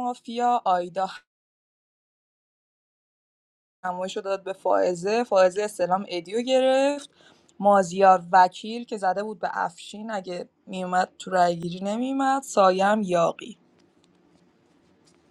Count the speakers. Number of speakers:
one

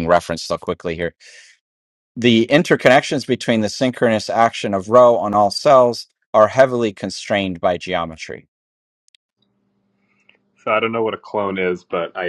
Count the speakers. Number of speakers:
two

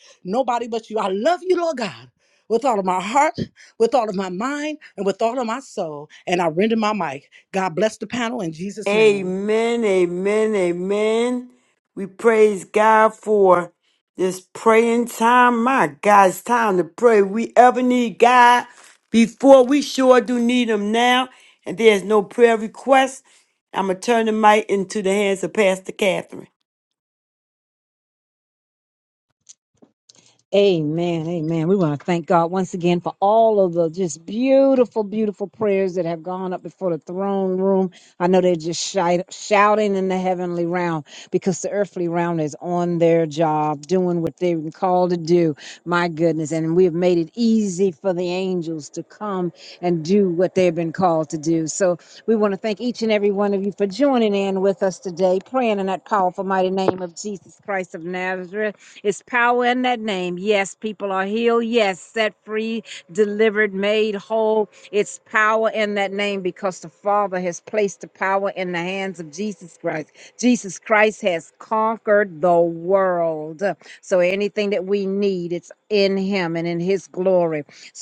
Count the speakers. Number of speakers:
three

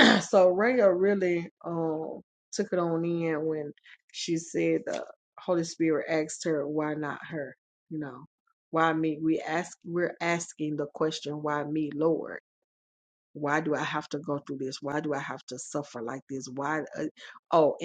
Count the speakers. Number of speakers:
one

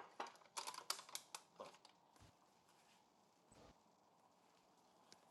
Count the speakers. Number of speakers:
zero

